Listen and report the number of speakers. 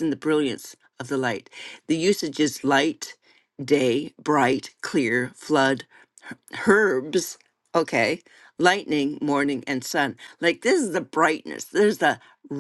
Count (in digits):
1